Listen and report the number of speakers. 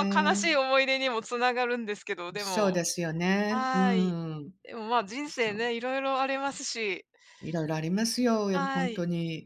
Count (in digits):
2